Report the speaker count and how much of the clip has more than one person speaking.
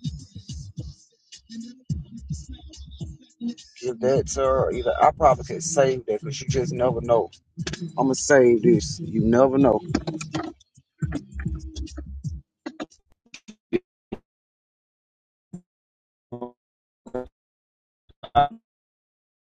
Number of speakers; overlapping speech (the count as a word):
one, no overlap